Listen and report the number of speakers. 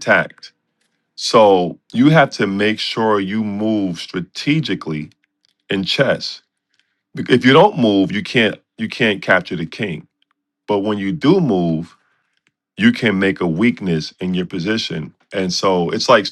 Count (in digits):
1